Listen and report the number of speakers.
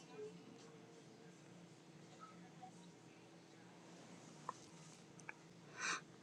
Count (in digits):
0